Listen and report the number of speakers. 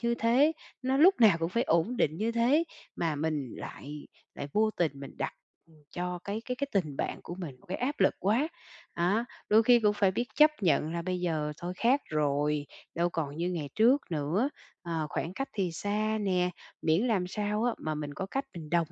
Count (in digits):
1